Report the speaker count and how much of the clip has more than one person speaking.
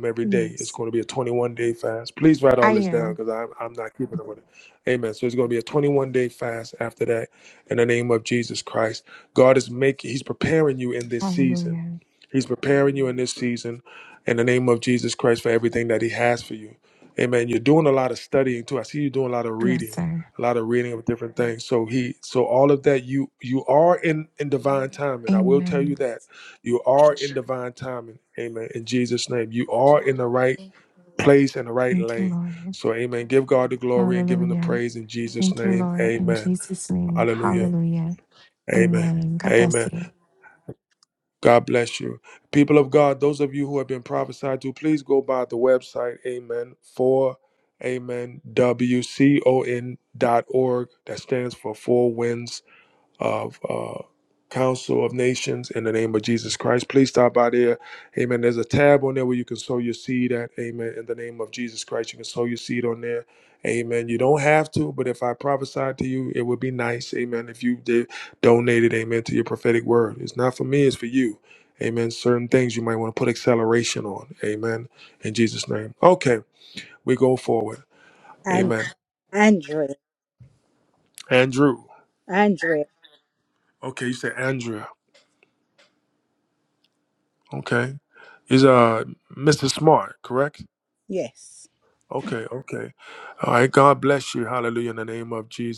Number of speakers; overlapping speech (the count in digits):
3, about 7%